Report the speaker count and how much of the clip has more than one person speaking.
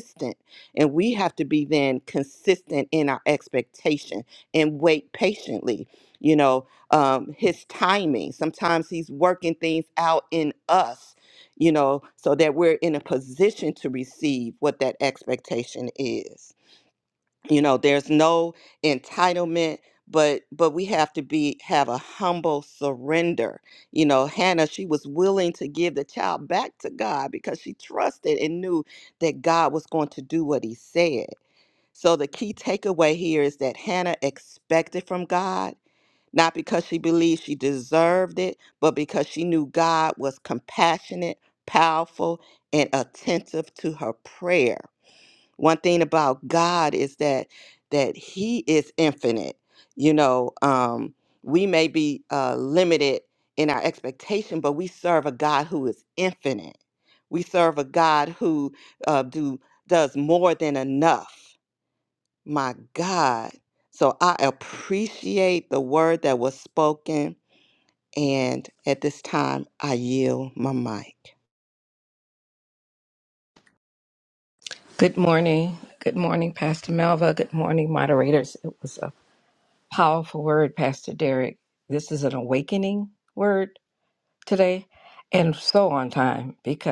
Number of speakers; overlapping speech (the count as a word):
two, no overlap